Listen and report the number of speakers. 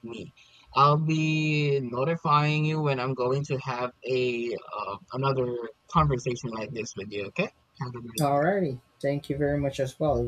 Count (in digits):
2